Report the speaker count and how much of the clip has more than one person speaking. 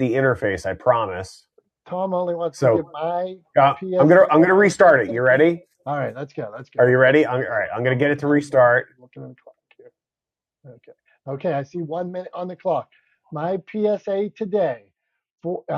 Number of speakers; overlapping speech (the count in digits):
2, about 18%